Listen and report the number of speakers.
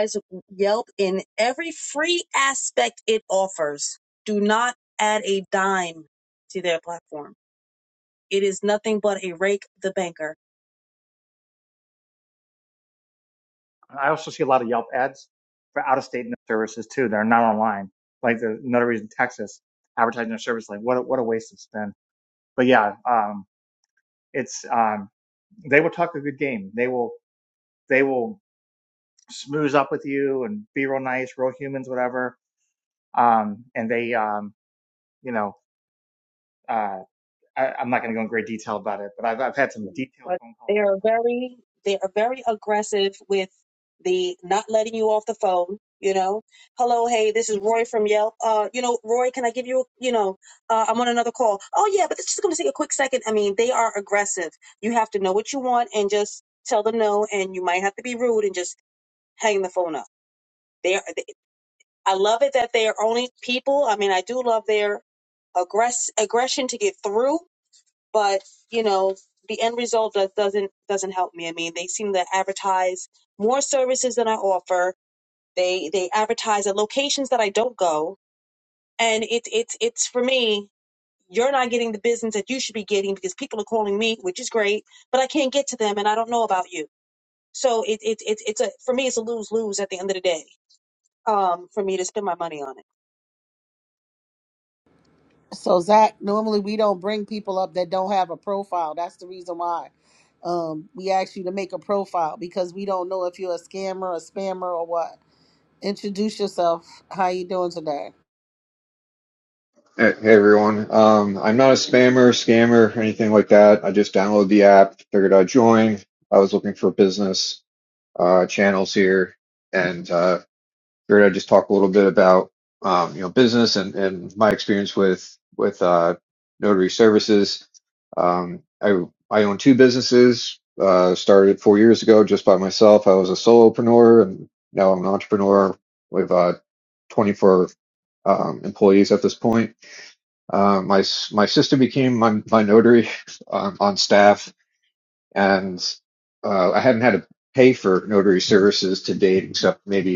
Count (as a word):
four